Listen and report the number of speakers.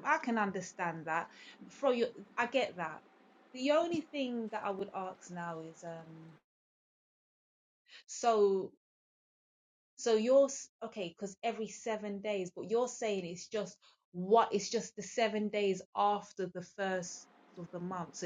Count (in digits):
1